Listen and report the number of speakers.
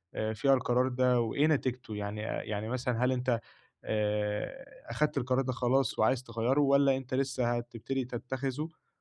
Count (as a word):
one